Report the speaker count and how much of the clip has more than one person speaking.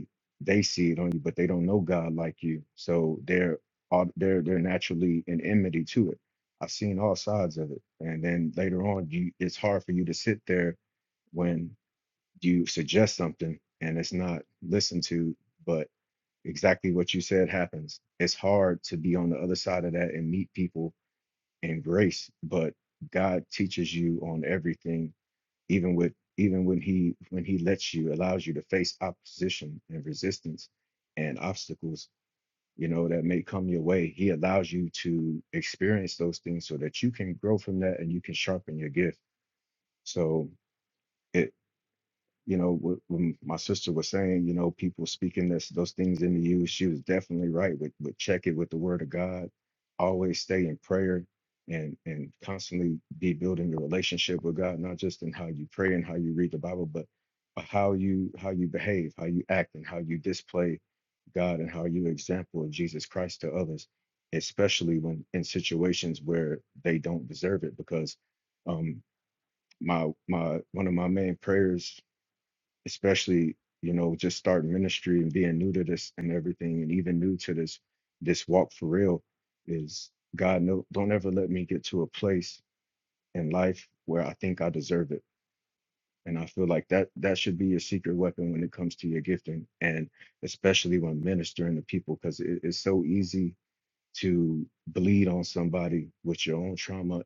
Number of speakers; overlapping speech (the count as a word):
one, no overlap